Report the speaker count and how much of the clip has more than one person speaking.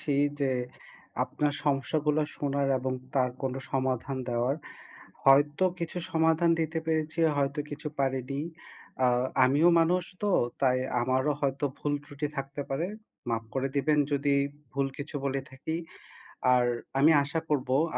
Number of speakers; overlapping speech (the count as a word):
one, no overlap